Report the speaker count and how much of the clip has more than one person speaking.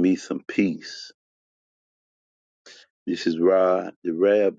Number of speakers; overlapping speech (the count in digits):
1, no overlap